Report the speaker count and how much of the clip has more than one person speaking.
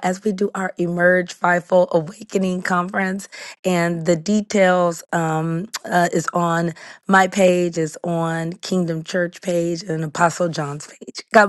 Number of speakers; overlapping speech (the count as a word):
one, no overlap